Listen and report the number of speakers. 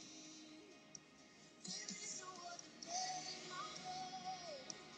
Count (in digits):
0